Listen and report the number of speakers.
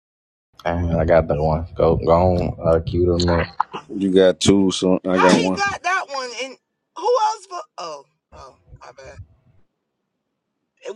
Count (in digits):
3